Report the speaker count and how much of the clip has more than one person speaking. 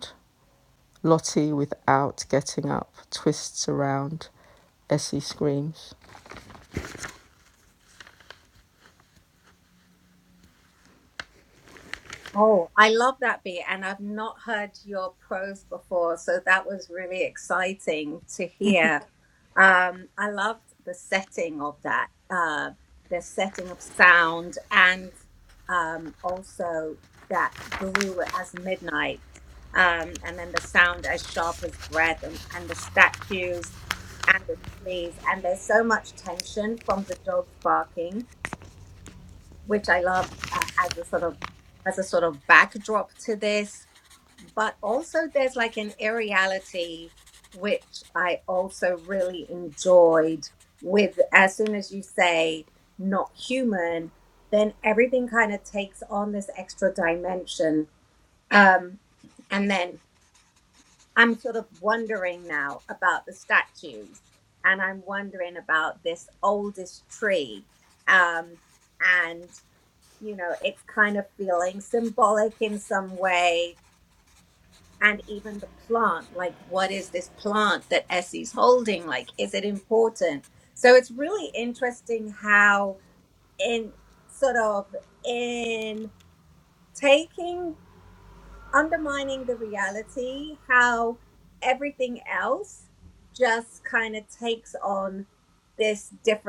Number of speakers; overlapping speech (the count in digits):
2, no overlap